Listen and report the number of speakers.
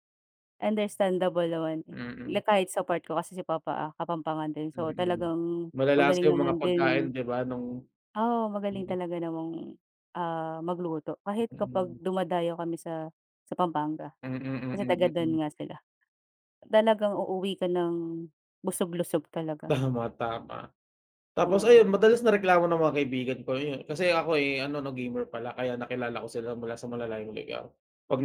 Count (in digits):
2